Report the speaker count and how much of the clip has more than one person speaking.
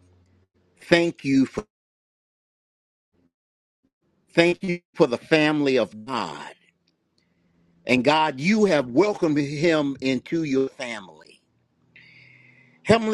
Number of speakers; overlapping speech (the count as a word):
one, no overlap